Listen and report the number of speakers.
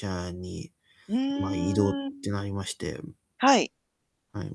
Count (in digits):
2